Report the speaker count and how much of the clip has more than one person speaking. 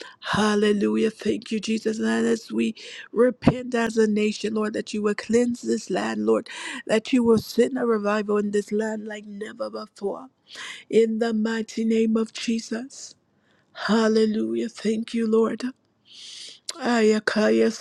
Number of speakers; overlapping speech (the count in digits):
1, no overlap